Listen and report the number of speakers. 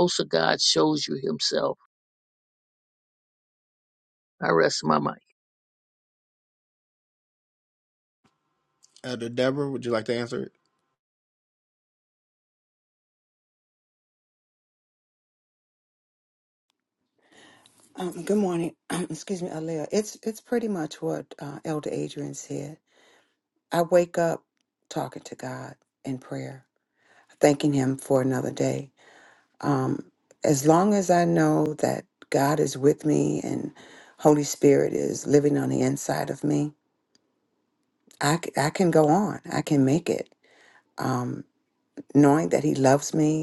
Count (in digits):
3